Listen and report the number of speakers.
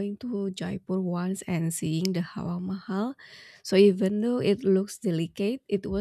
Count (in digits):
1